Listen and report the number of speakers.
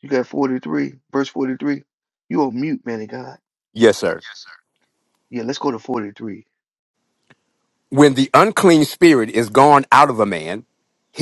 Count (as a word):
two